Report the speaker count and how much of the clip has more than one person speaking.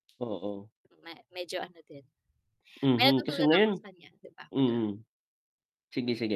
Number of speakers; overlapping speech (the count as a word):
two, about 13%